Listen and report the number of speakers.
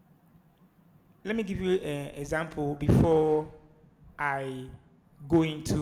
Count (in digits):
1